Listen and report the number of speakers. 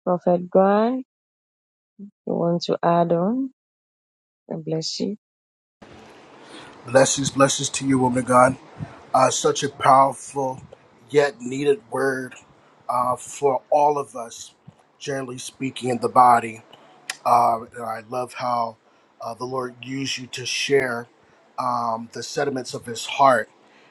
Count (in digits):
2